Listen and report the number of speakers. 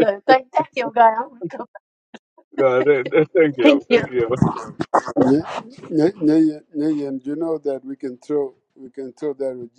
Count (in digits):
3